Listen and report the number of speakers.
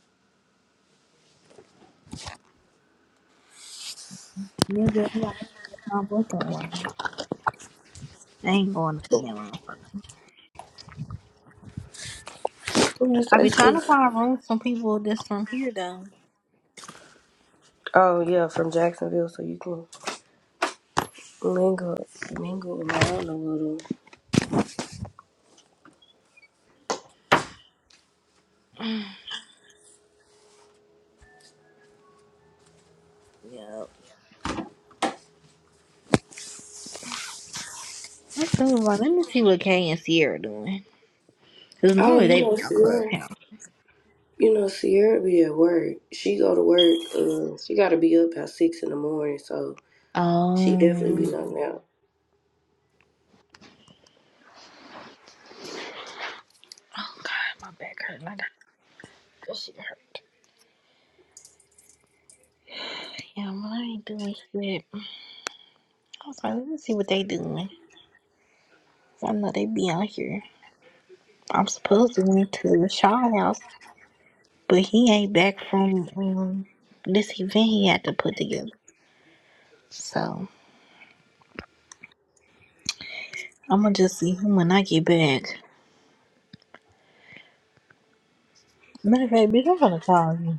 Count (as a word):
two